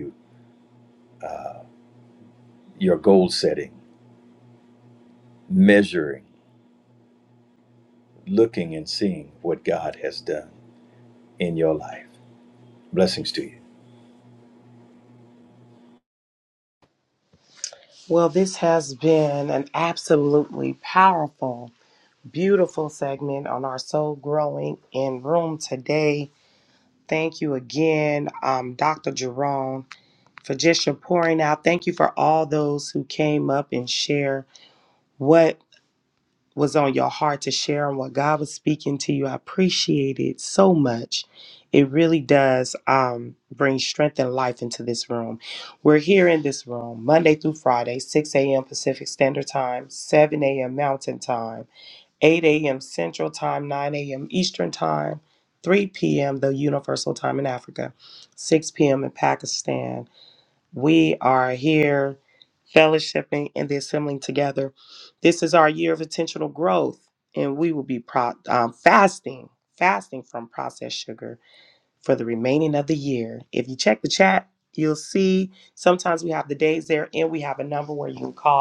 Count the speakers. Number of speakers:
two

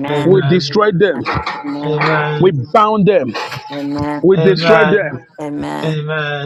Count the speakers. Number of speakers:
three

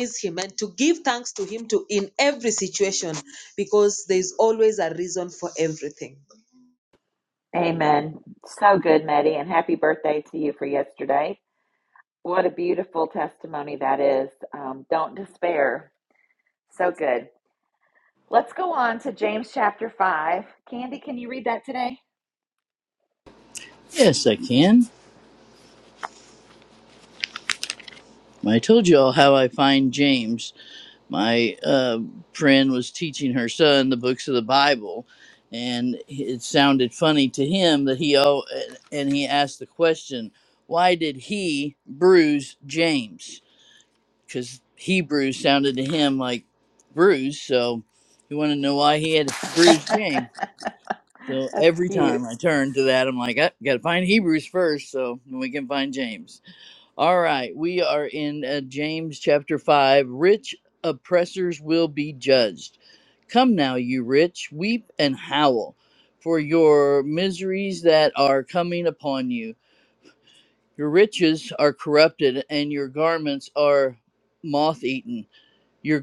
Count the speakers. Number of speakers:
three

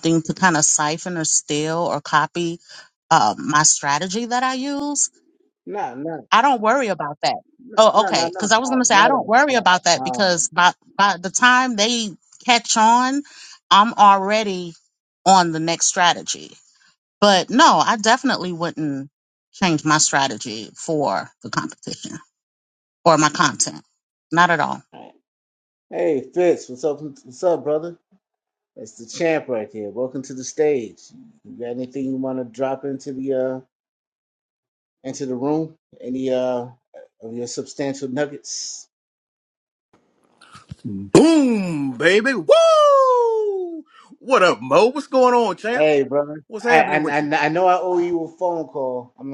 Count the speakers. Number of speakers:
three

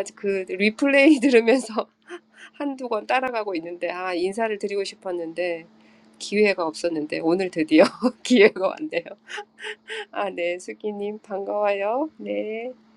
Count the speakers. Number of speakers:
one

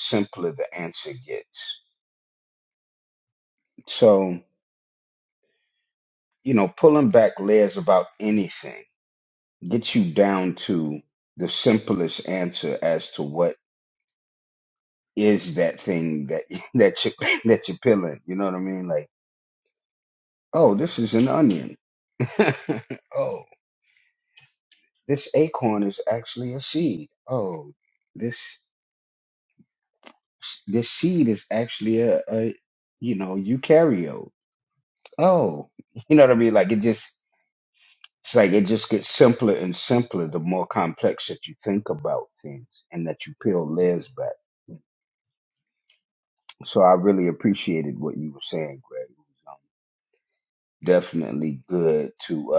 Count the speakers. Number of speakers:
one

